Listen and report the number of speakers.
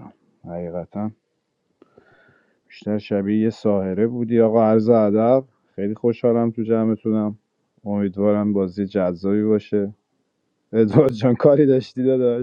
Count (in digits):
1